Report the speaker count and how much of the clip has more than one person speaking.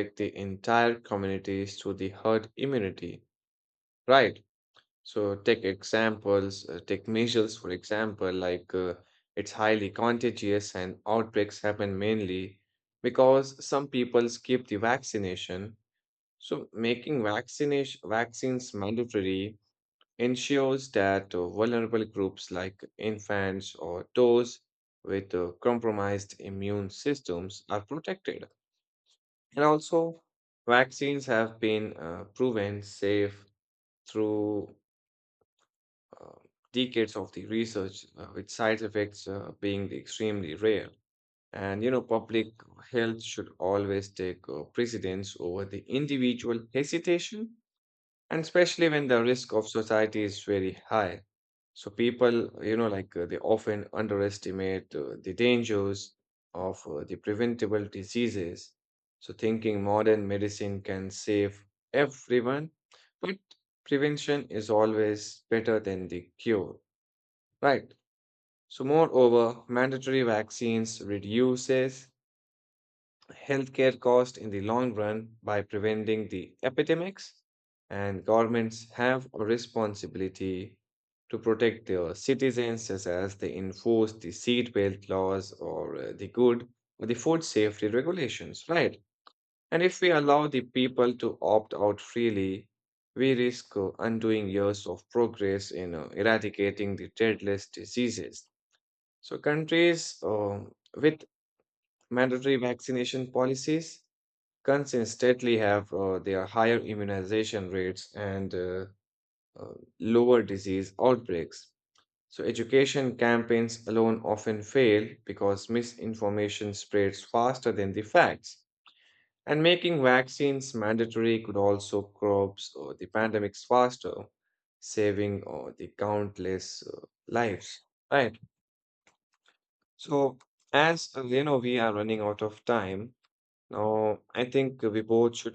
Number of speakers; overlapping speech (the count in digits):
1, no overlap